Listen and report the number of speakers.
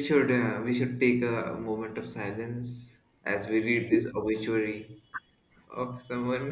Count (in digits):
1